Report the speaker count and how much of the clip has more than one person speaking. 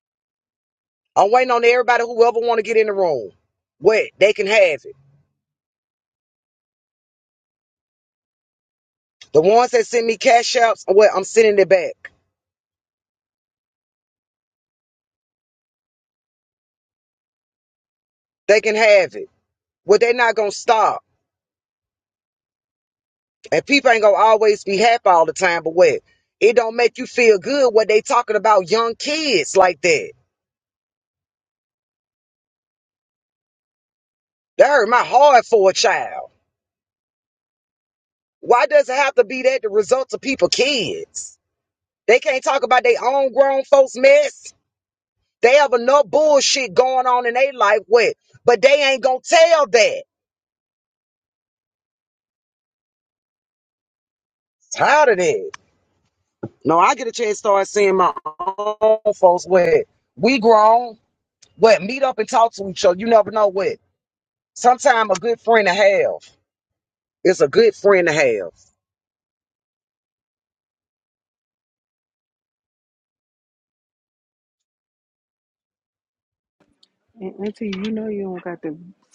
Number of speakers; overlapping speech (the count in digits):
2, no overlap